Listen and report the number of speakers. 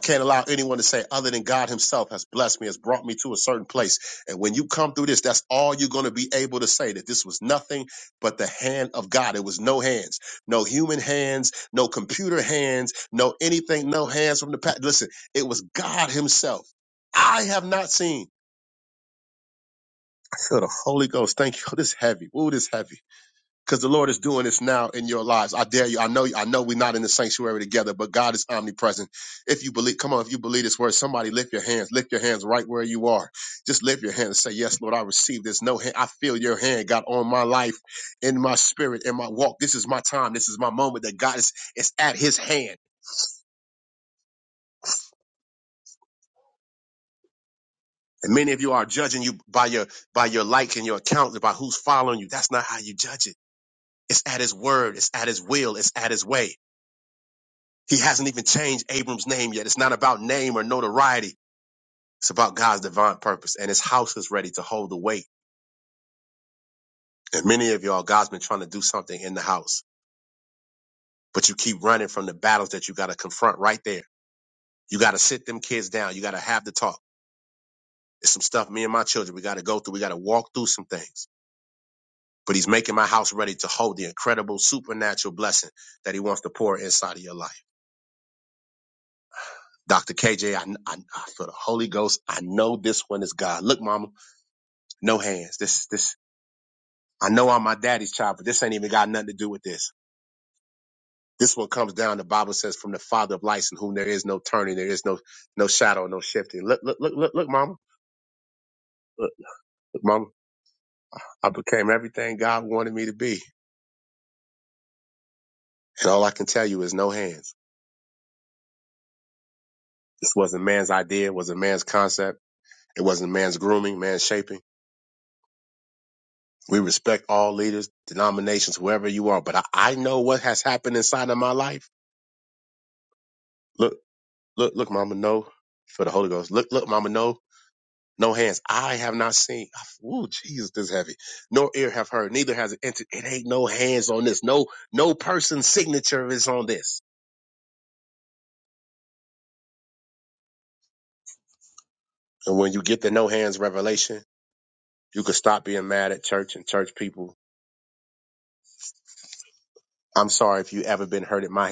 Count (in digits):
1